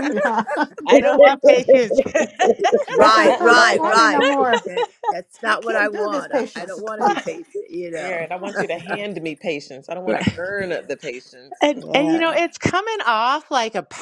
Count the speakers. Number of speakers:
4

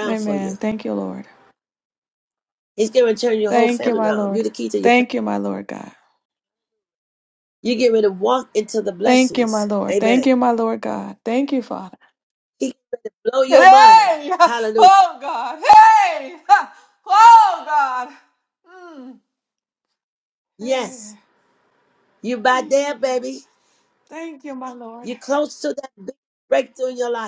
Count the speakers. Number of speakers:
2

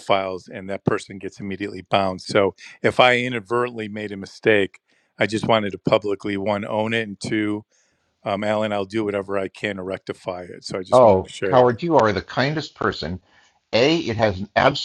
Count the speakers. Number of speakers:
2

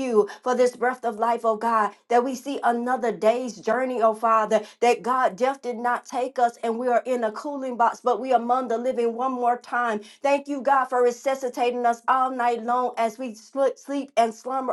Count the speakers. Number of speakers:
1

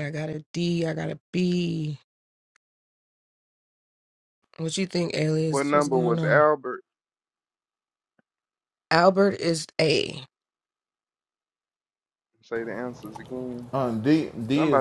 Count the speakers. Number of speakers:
3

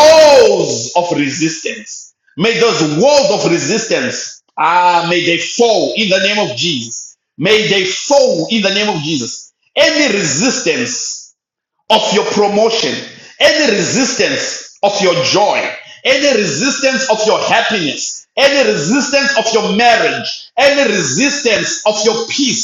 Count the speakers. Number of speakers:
1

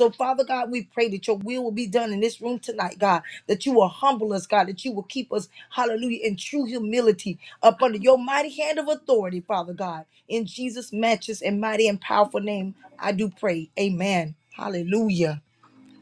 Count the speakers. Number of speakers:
1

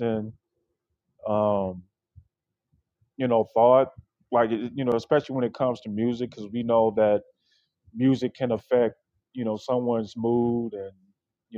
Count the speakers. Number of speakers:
1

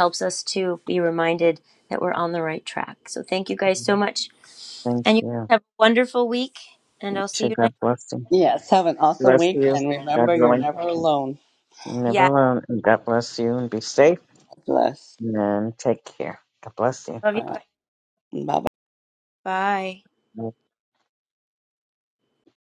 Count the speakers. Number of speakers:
3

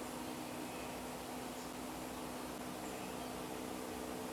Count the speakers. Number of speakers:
0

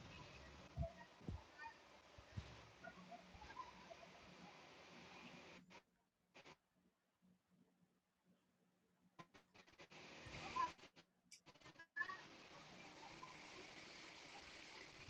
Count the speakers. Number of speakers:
0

